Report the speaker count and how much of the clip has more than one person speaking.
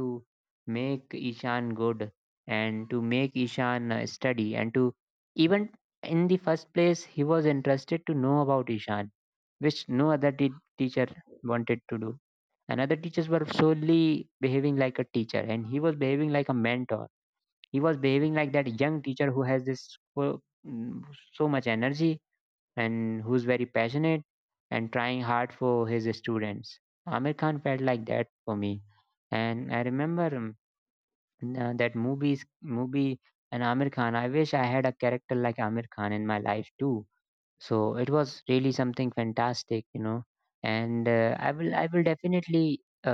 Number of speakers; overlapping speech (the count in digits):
1, no overlap